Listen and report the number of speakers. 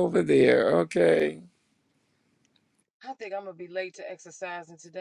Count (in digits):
2